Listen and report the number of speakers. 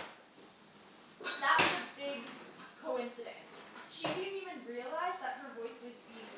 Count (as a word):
one